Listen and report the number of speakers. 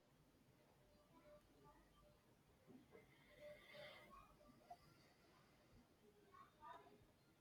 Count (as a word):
zero